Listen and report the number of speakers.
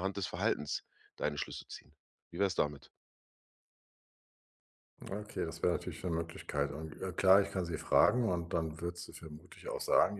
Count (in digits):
2